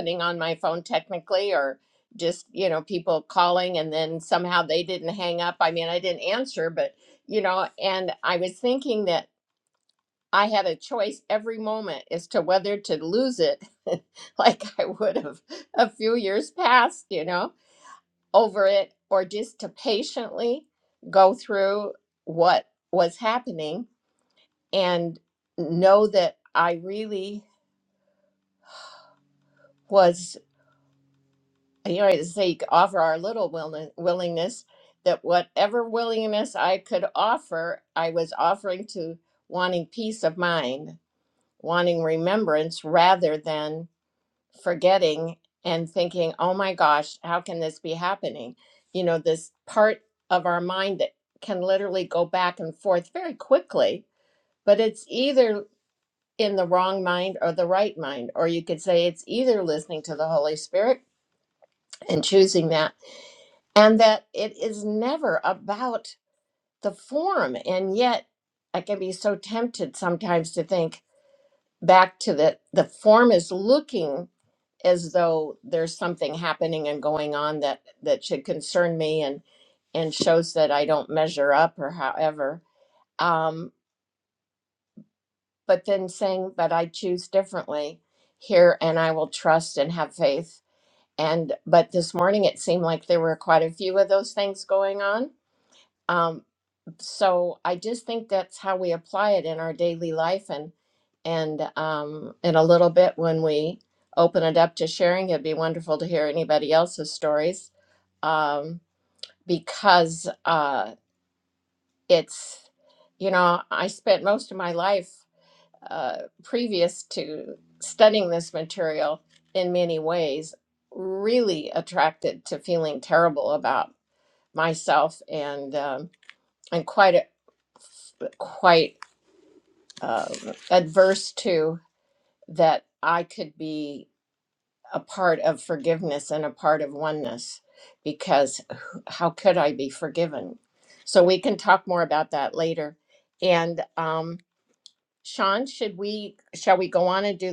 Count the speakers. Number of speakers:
1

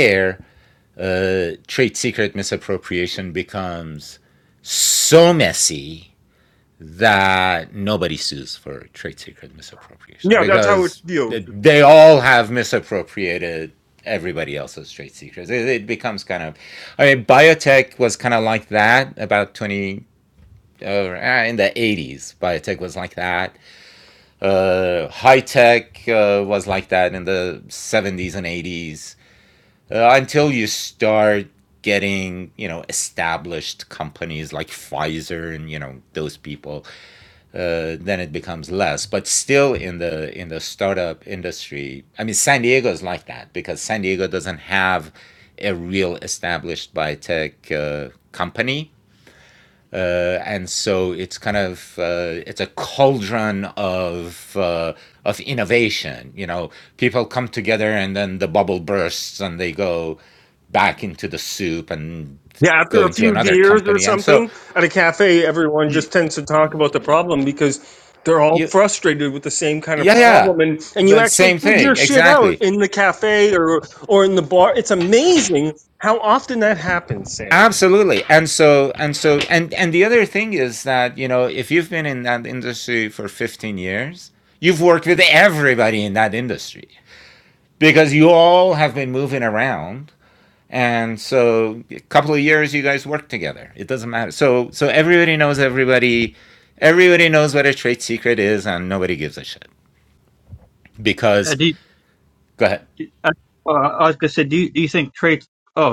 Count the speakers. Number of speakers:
3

